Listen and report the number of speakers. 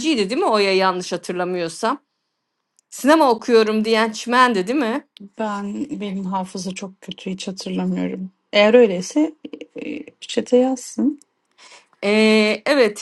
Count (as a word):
two